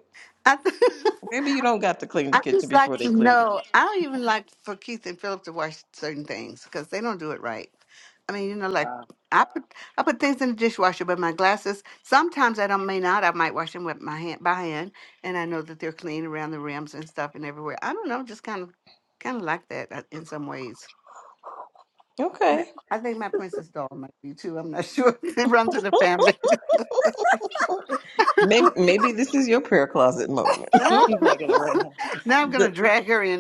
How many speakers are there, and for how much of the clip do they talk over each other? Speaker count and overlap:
three, about 6%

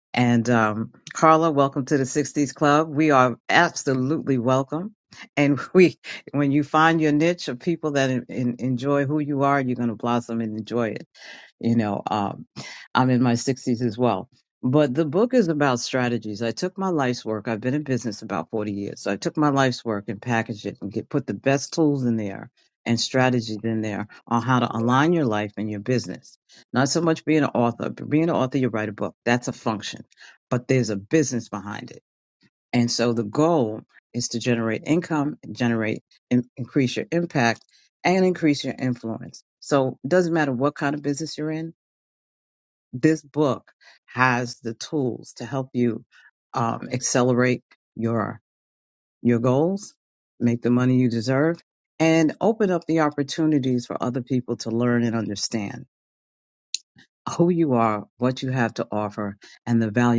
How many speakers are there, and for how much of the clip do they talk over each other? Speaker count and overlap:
one, no overlap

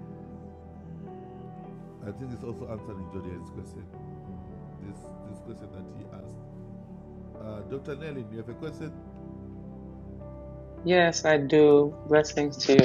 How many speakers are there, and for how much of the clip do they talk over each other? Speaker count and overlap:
two, no overlap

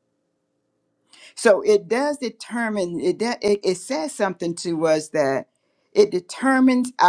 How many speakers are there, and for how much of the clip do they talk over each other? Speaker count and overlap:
one, no overlap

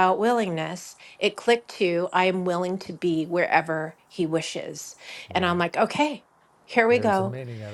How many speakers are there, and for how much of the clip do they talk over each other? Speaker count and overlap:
two, about 10%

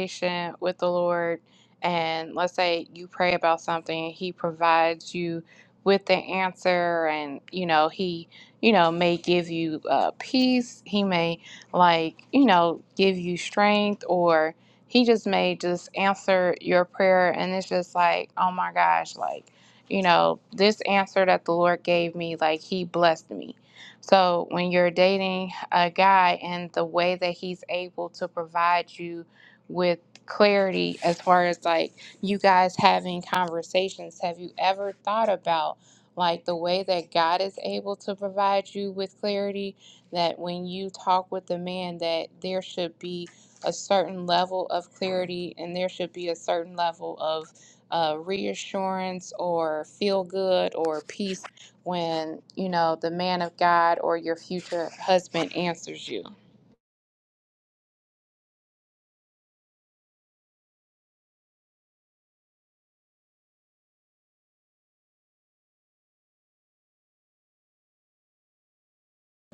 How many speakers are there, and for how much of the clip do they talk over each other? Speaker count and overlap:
one, no overlap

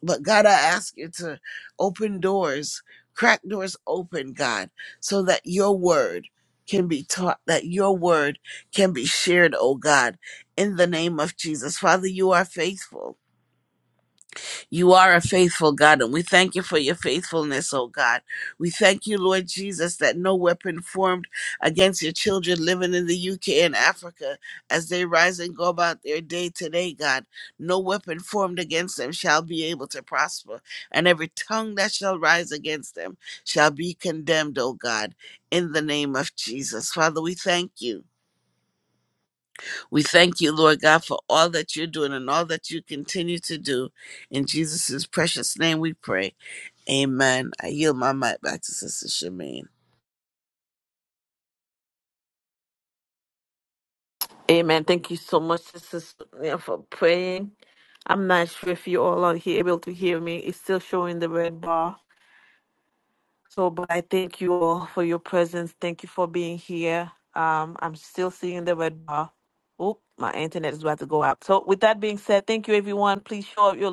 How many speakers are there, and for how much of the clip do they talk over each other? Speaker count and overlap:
two, no overlap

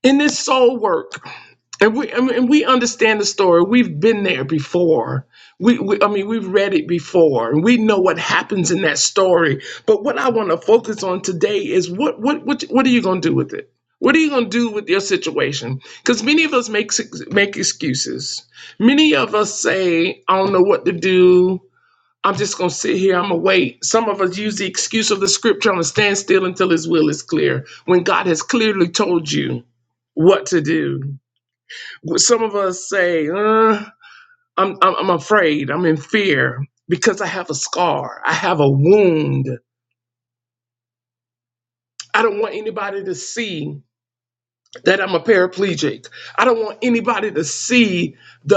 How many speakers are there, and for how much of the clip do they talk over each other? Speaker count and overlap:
one, no overlap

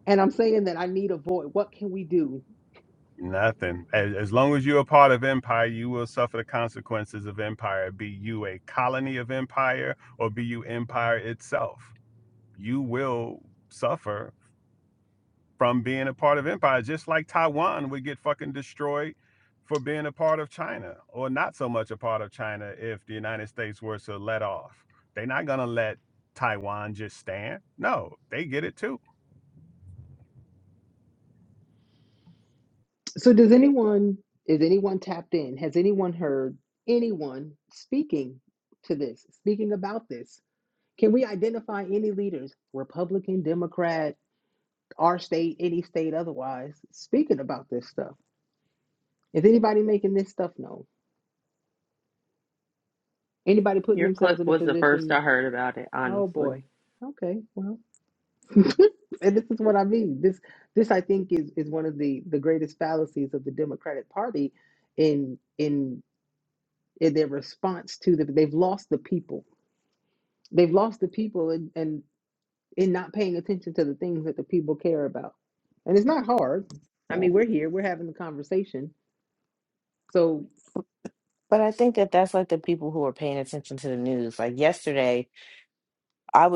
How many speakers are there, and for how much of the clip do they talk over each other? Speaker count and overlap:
four, about 2%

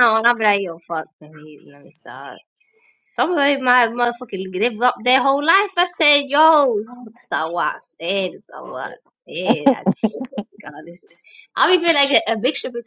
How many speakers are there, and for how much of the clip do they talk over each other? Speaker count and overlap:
one, no overlap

